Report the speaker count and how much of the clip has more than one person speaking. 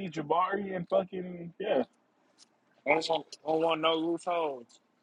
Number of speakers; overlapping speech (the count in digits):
2, no overlap